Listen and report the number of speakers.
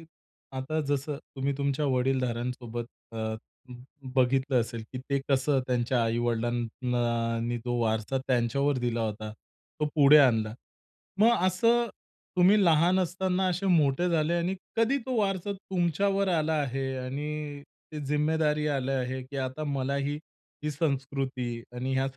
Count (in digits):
1